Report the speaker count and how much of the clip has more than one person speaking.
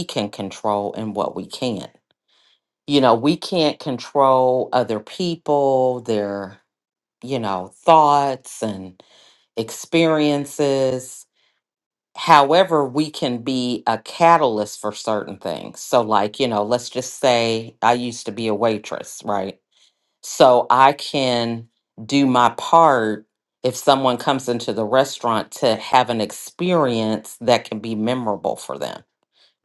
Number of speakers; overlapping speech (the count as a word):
one, no overlap